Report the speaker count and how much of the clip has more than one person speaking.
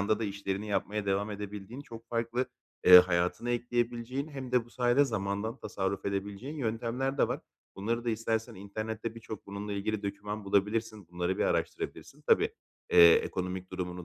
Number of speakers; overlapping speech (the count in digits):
1, no overlap